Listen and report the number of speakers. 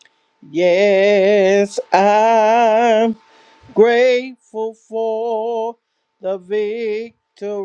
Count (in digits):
1